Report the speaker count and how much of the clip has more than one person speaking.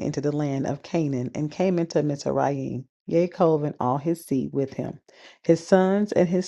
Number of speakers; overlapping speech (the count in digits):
1, no overlap